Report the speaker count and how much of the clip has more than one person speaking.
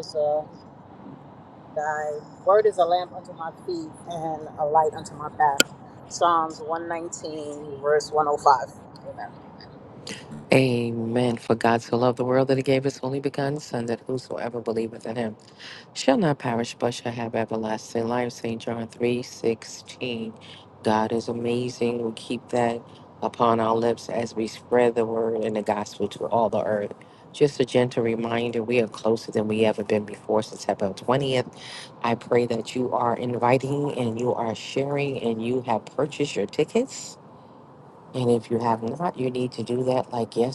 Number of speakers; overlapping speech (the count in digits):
2, no overlap